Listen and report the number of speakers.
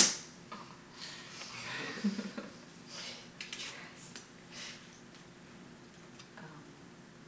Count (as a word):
zero